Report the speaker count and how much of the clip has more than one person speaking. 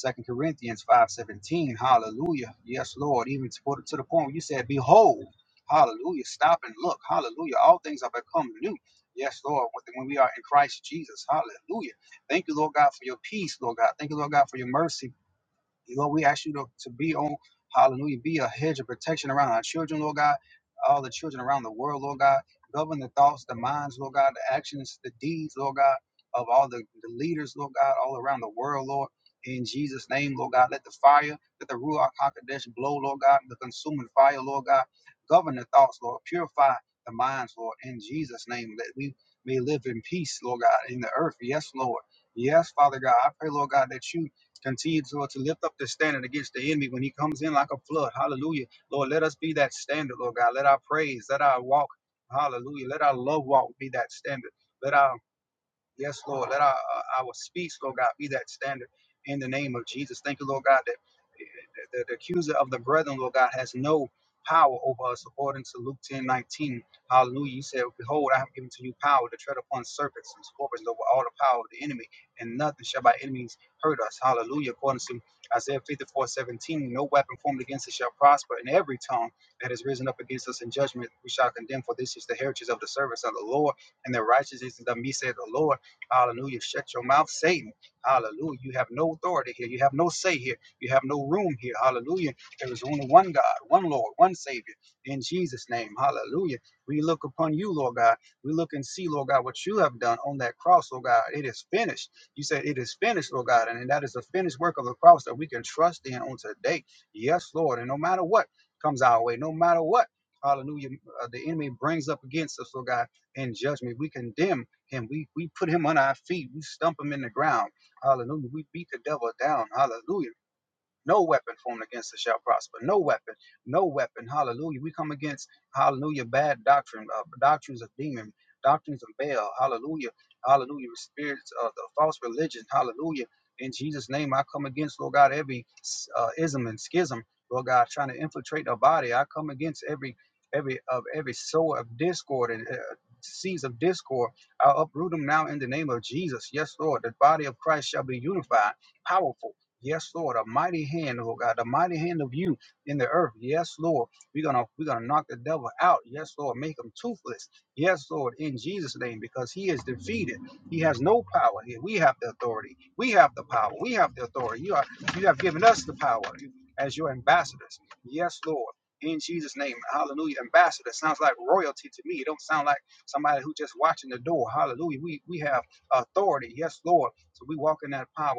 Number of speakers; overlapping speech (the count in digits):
1, no overlap